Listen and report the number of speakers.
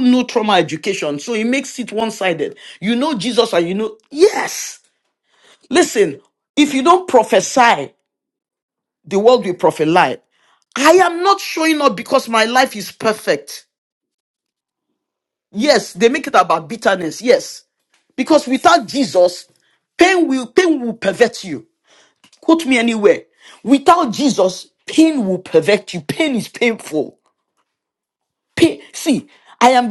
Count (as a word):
one